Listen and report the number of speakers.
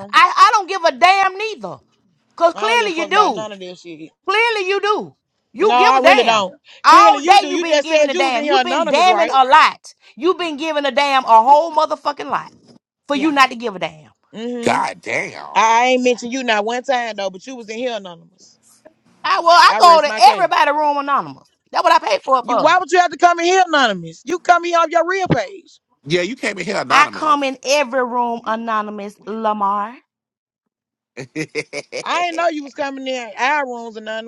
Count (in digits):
3